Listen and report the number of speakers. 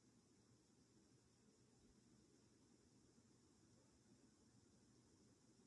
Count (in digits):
0